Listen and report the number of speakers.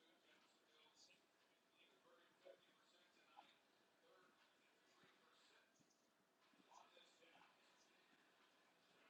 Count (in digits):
0